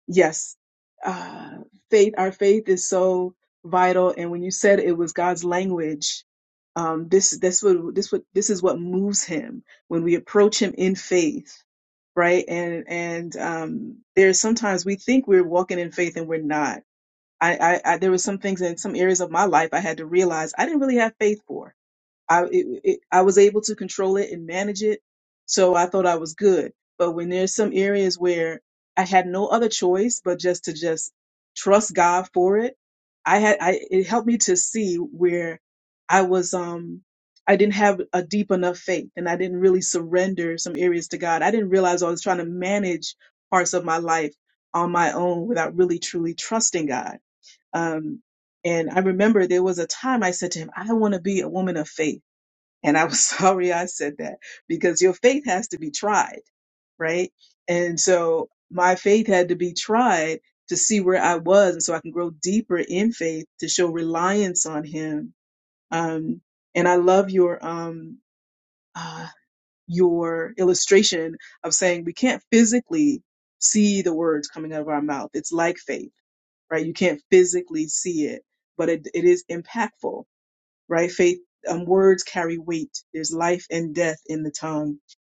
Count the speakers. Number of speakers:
1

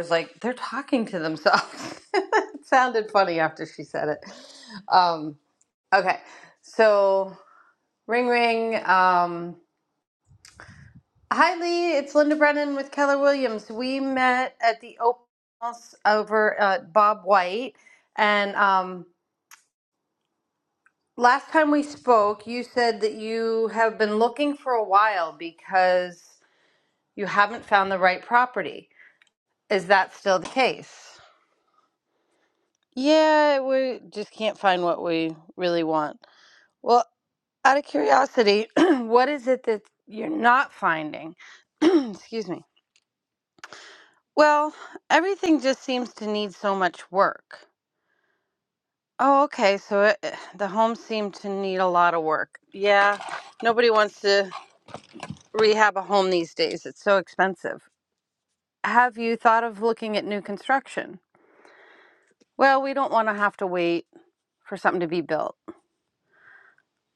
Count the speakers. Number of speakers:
1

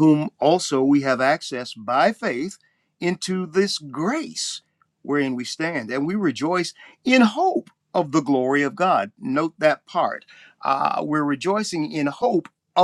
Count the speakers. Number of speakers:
1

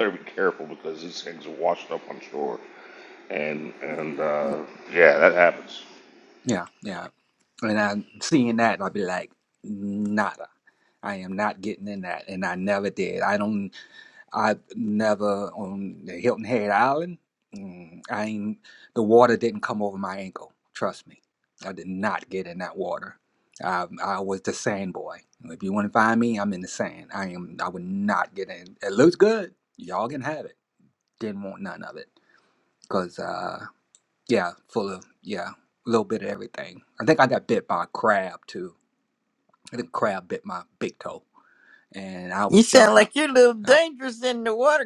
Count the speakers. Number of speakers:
3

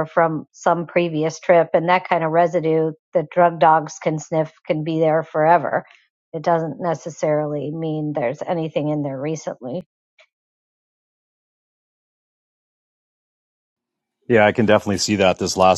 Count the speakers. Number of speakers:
2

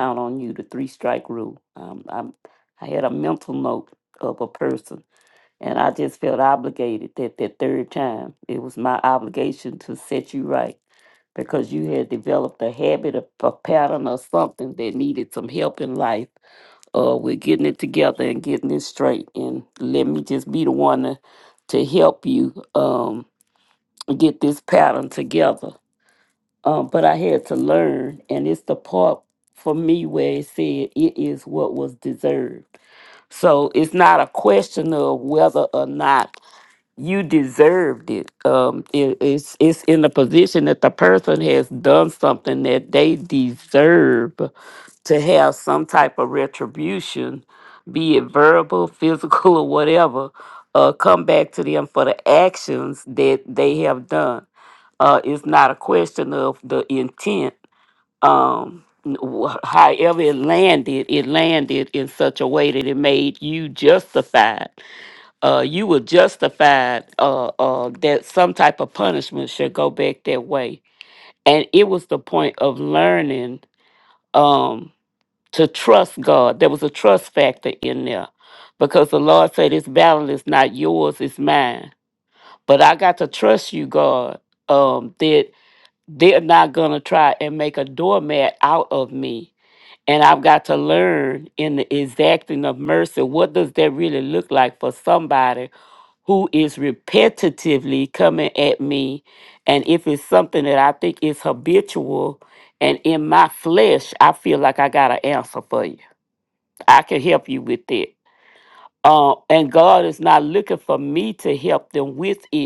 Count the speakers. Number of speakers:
1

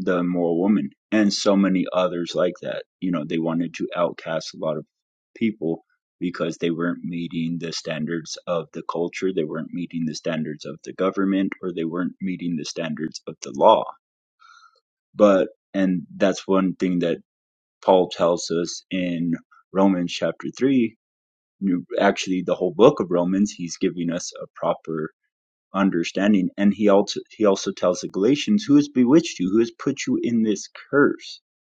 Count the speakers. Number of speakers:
1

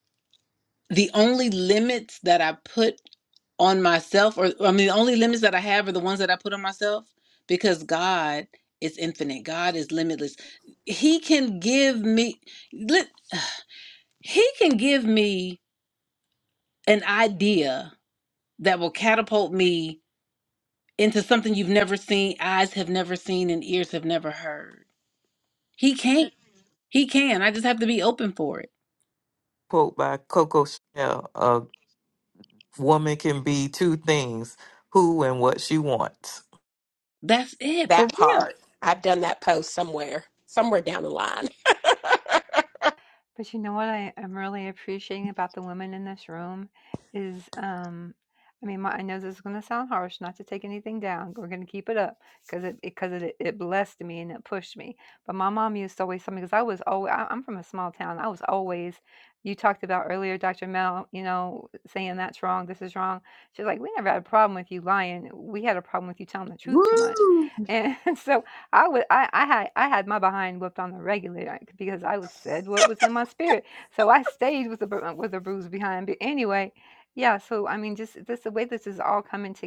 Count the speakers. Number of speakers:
4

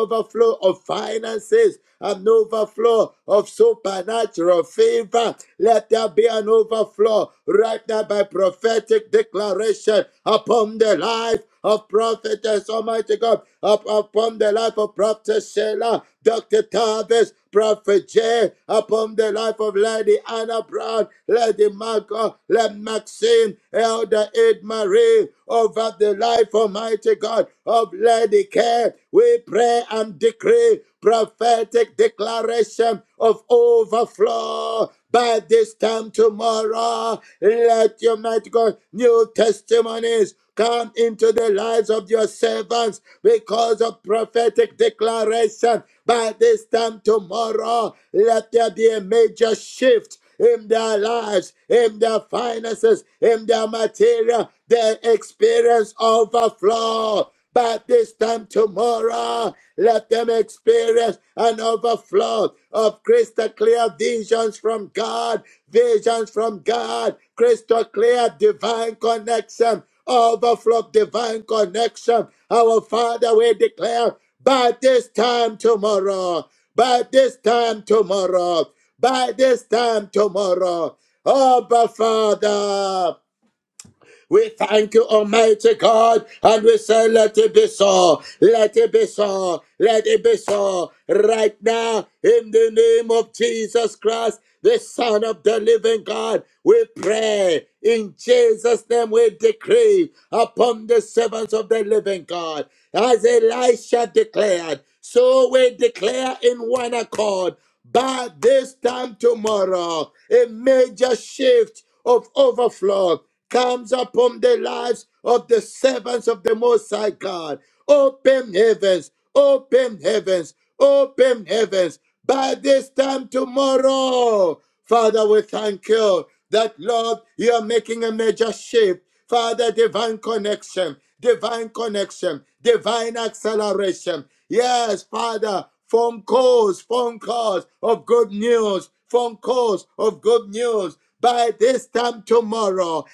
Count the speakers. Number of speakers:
1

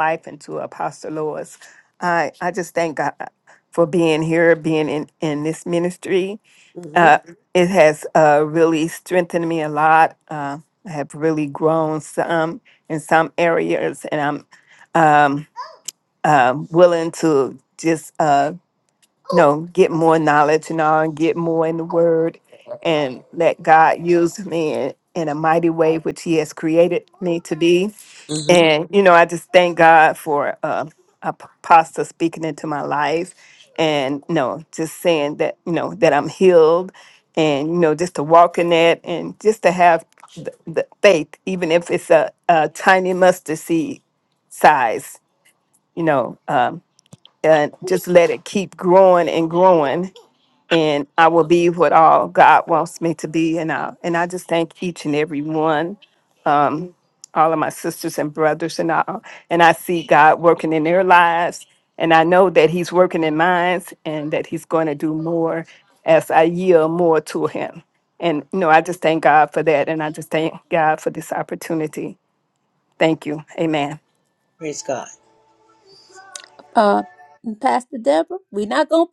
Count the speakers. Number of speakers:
3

